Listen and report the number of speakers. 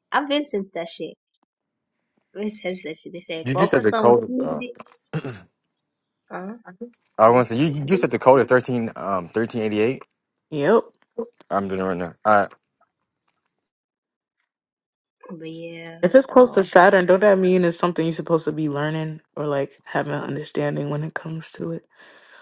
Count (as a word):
three